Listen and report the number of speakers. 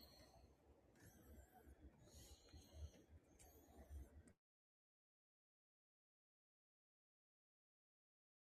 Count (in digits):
0